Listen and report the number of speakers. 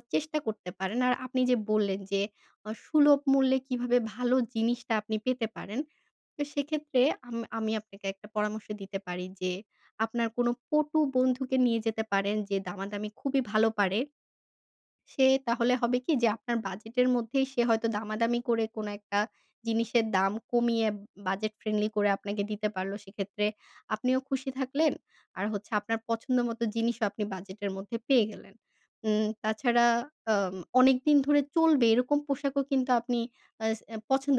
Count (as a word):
one